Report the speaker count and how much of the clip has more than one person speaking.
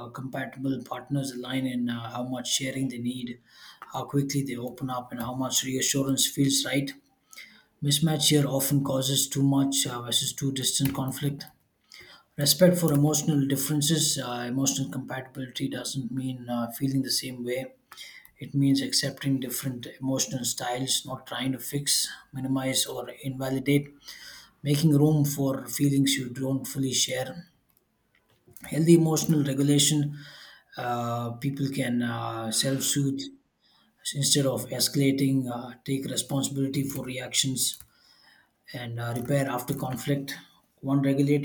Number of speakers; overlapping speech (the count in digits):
1, no overlap